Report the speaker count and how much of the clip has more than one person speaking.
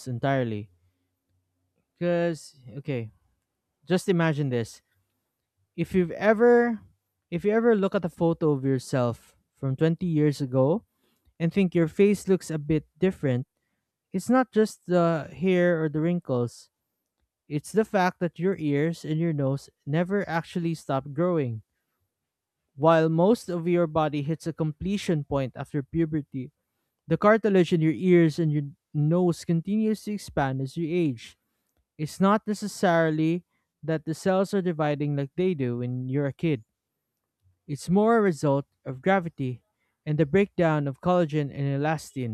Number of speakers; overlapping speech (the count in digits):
1, no overlap